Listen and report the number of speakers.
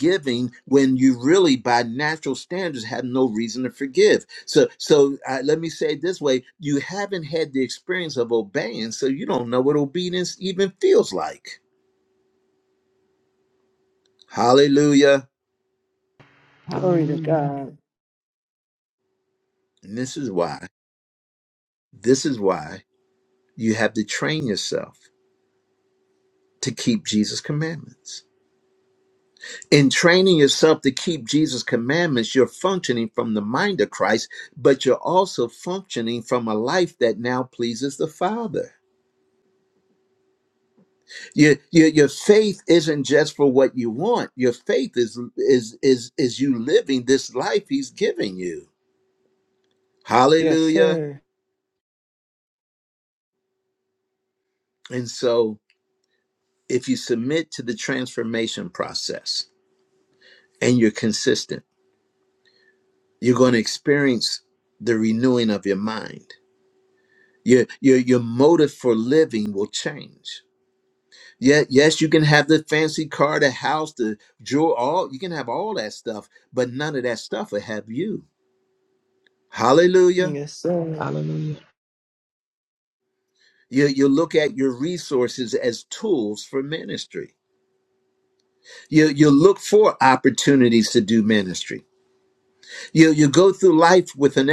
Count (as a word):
three